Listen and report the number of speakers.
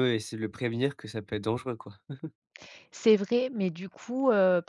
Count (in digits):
2